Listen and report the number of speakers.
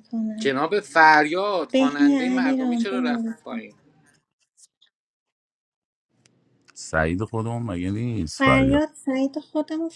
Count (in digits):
3